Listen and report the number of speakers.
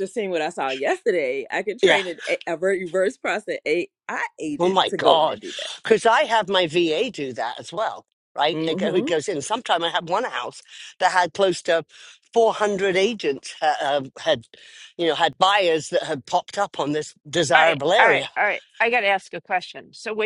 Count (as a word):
three